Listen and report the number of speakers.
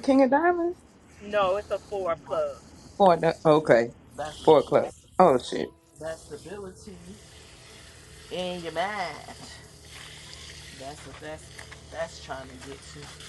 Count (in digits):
3